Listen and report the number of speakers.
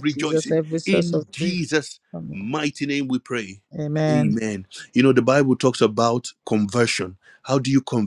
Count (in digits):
2